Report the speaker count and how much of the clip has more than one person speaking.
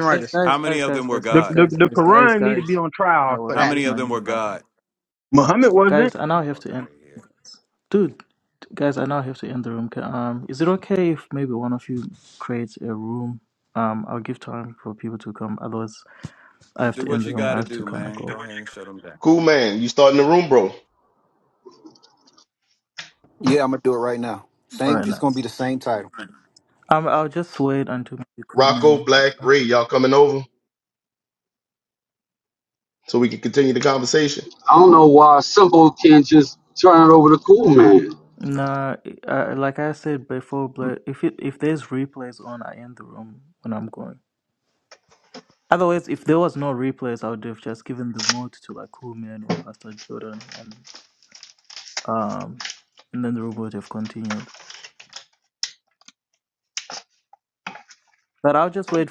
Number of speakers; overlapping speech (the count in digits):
6, about 11%